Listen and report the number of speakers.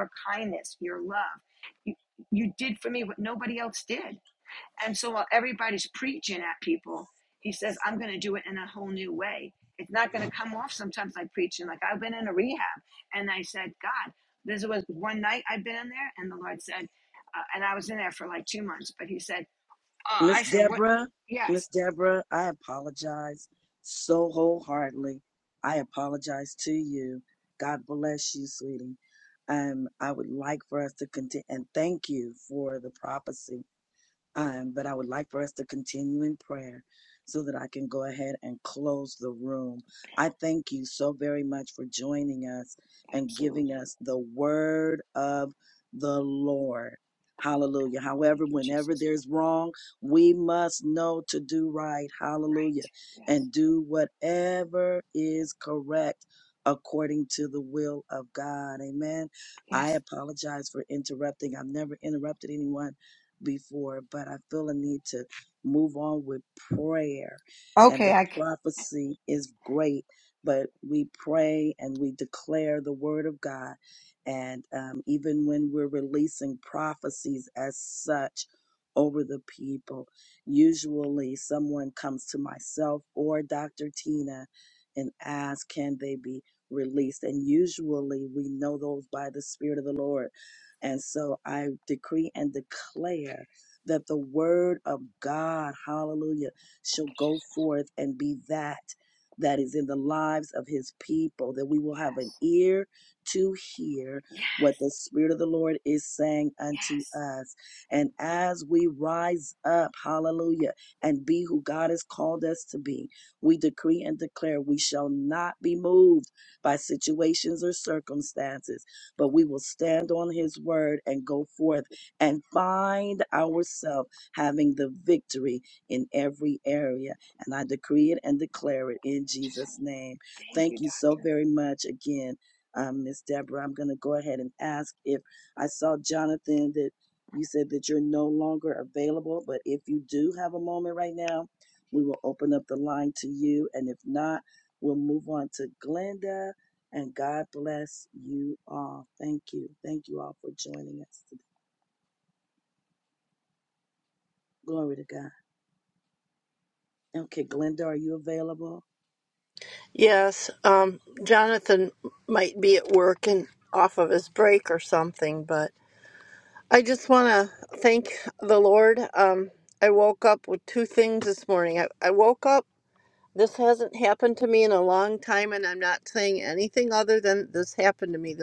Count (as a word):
three